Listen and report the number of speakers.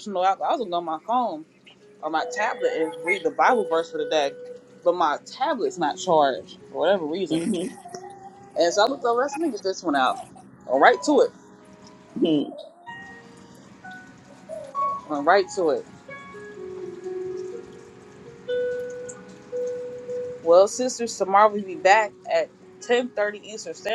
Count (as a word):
two